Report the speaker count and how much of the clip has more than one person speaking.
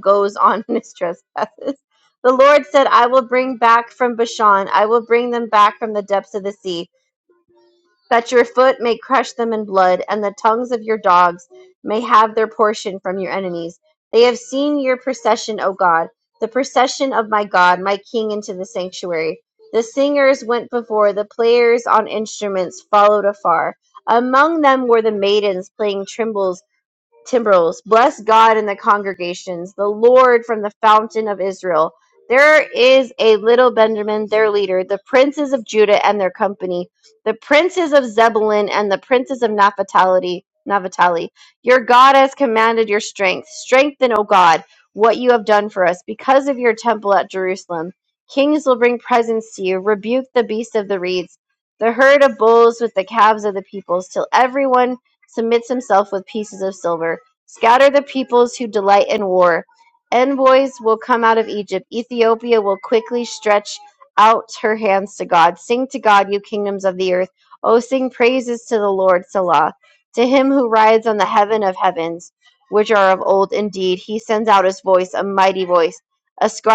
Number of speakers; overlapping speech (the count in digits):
1, no overlap